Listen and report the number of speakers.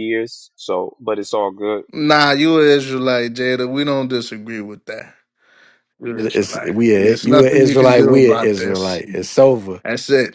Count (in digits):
3